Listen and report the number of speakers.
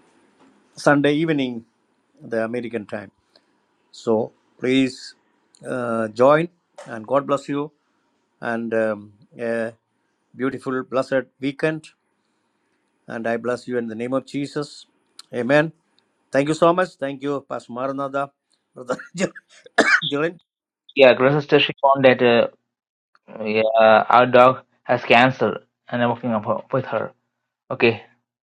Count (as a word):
two